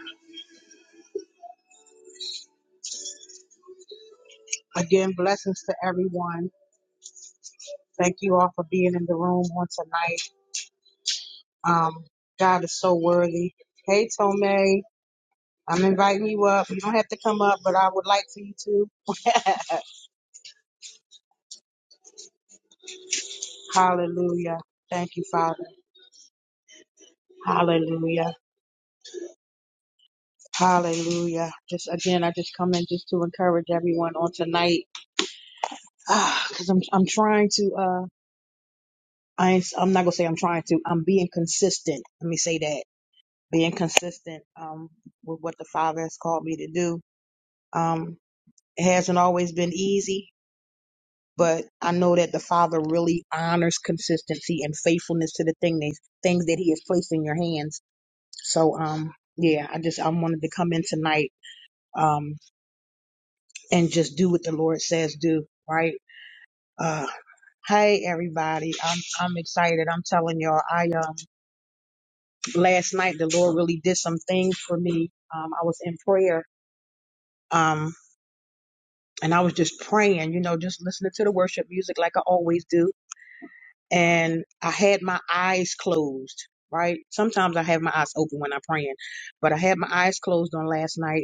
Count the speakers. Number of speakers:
one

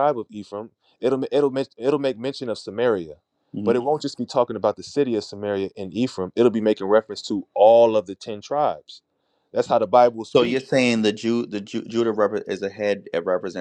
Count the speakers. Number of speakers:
two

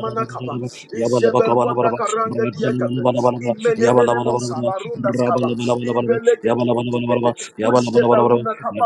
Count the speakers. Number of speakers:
two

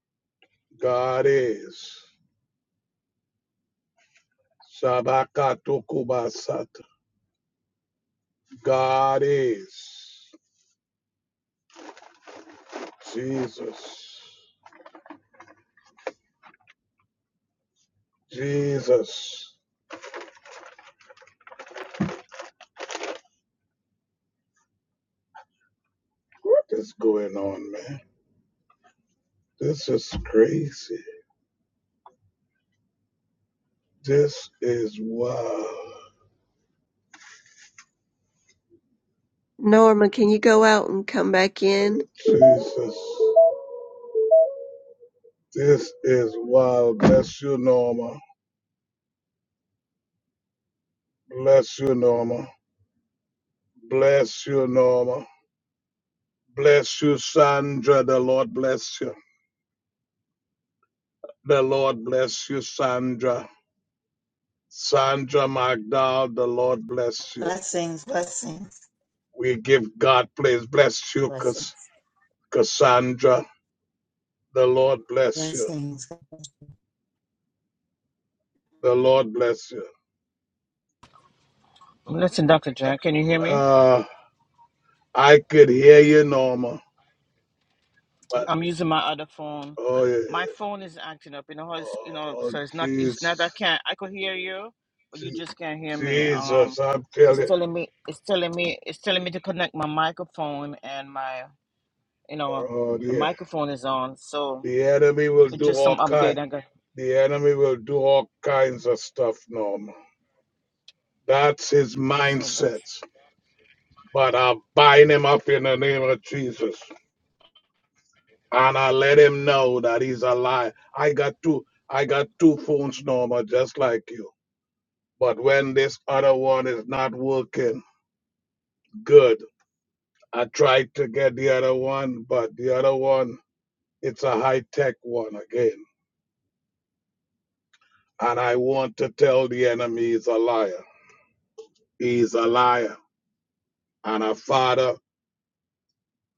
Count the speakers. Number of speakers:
four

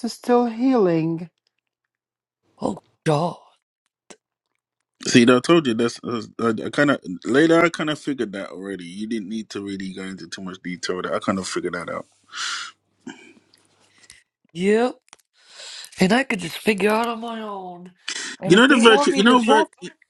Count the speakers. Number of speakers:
three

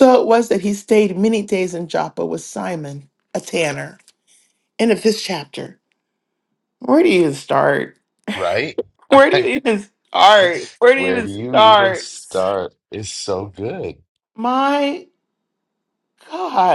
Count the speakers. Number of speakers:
two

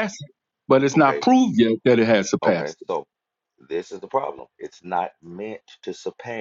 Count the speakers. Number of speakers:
two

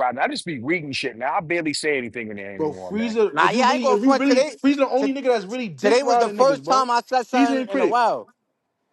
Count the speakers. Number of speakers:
three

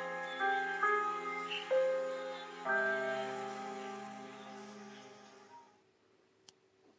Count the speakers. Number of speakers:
zero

